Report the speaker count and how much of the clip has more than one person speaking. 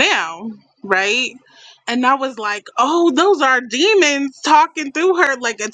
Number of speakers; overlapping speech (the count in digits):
1, no overlap